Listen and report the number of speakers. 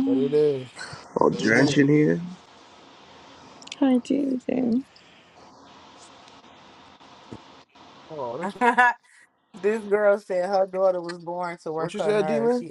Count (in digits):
4